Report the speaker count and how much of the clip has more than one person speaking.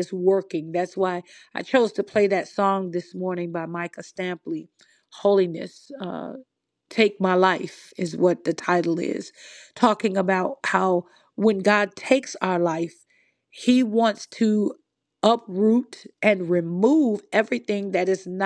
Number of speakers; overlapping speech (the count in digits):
1, no overlap